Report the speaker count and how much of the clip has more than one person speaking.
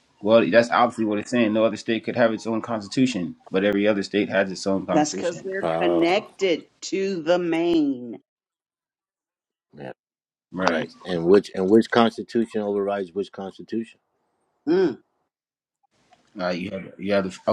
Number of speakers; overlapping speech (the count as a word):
three, about 7%